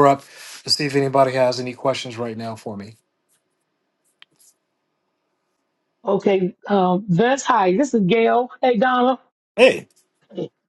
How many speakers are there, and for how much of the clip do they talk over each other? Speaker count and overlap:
two, no overlap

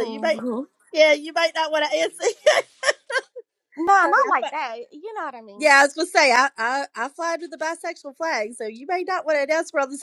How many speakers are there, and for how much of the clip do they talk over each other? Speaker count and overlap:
two, about 10%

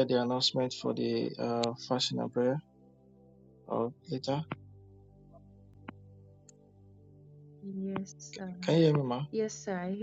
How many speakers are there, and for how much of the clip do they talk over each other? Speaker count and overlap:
two, no overlap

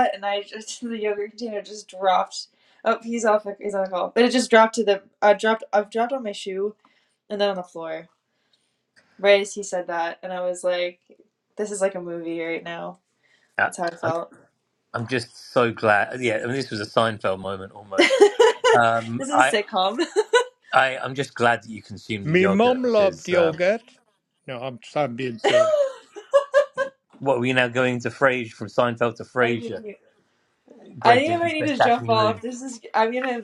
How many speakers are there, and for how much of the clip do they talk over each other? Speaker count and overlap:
three, about 12%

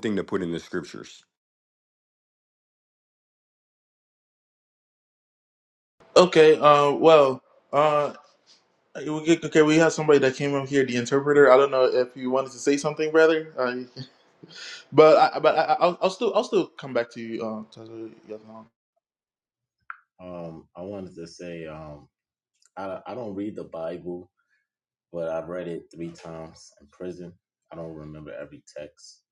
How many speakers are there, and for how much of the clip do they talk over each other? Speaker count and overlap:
three, no overlap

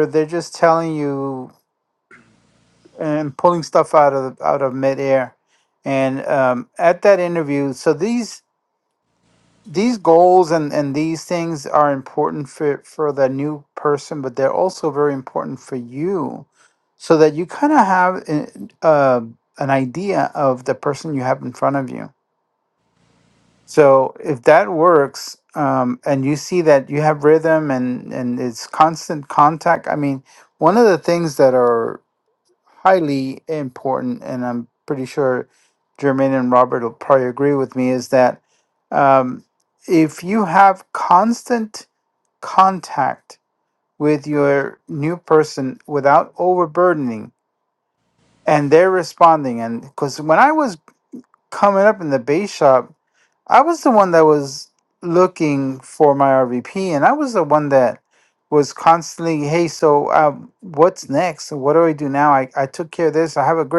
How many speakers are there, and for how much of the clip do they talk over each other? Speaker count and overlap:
one, no overlap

